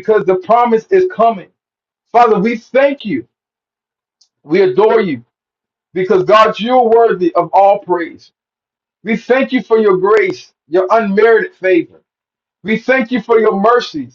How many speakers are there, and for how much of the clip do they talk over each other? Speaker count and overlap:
1, no overlap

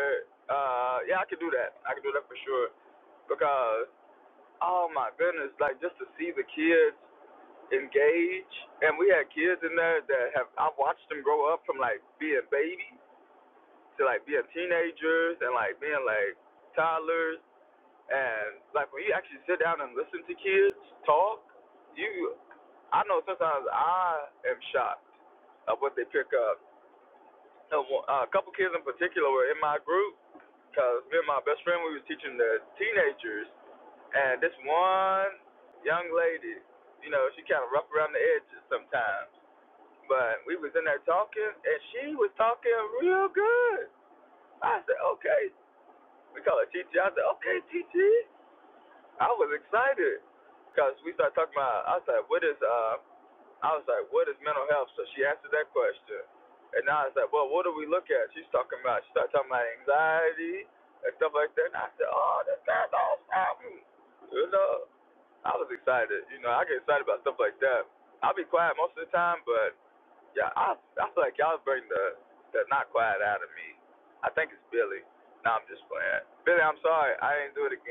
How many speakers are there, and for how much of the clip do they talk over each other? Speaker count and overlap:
1, no overlap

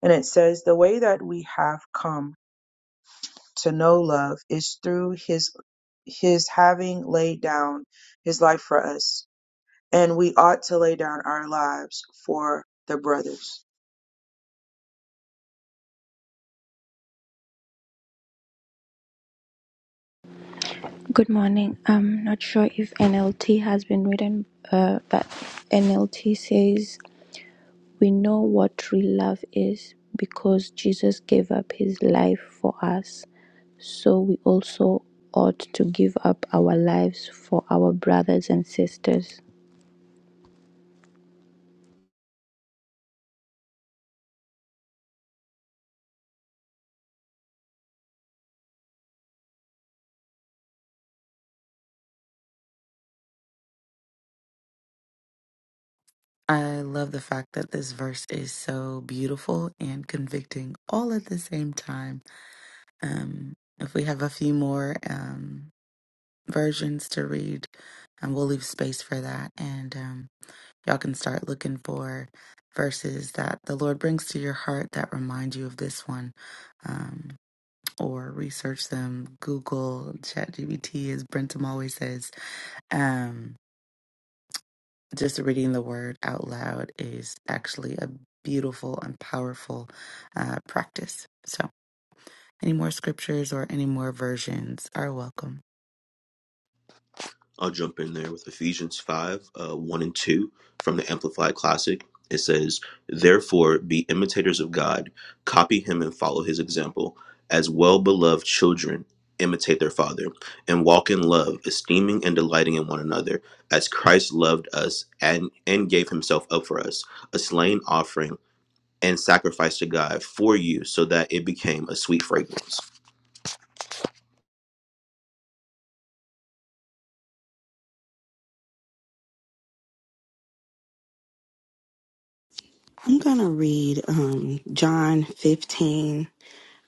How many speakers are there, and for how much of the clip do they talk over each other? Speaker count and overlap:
5, no overlap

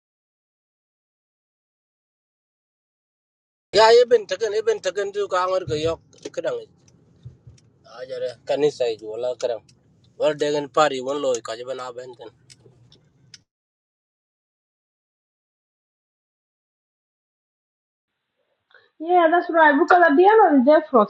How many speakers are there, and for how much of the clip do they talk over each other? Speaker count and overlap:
2, no overlap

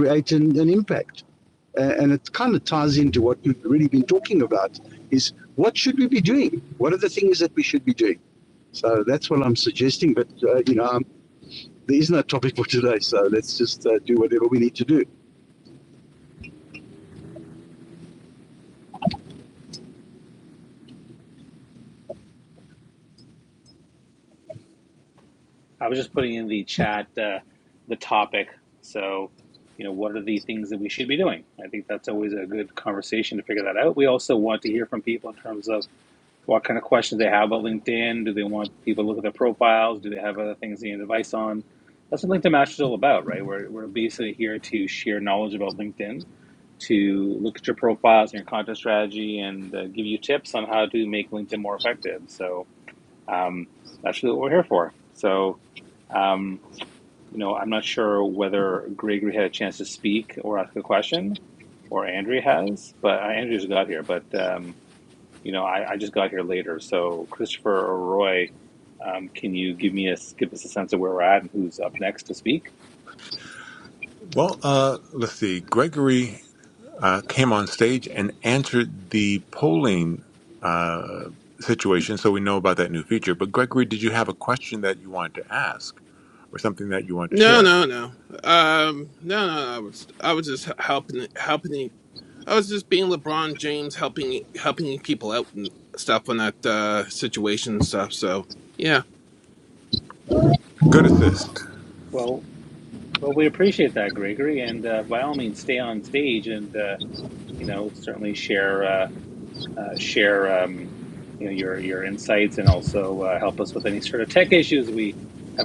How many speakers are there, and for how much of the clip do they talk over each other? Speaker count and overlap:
4, under 1%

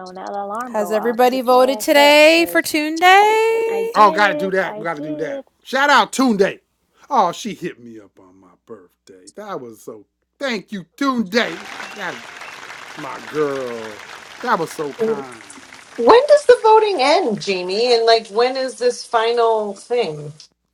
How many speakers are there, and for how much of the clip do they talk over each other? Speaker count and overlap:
4, about 18%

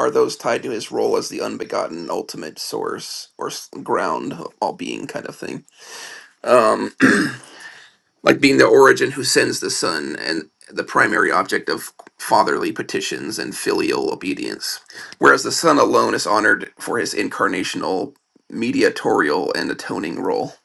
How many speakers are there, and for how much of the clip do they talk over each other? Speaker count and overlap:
1, no overlap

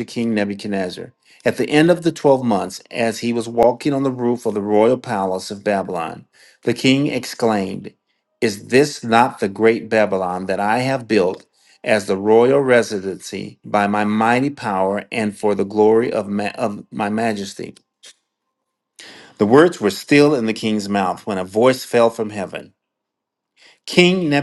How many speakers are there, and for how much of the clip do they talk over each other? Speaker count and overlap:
1, no overlap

